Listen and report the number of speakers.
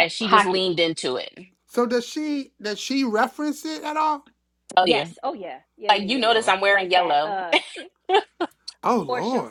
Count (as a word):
three